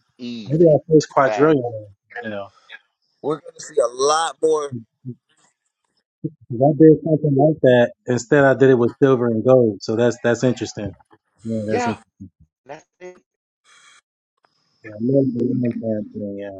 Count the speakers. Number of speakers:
3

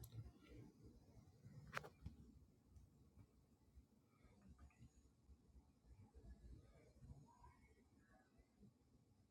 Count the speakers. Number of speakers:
0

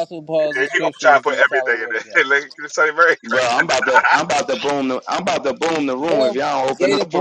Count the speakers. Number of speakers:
3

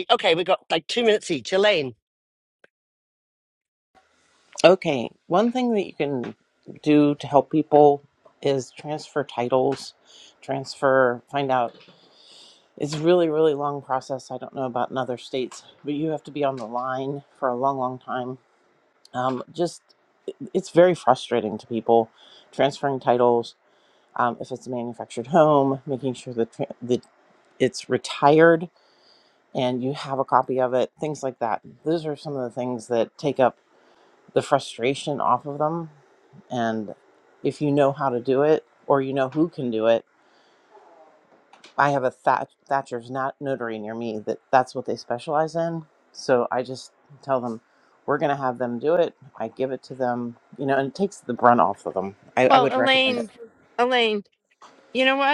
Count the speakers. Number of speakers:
3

